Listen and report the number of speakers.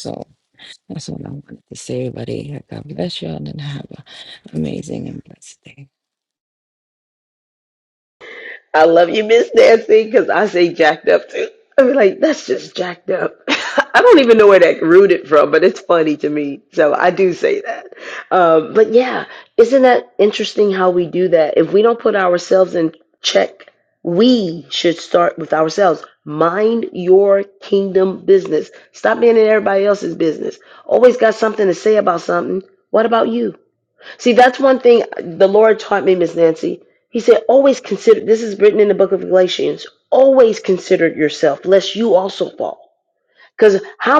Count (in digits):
2